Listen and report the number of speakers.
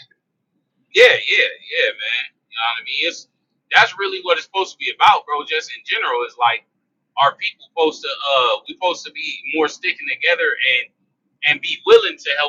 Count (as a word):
one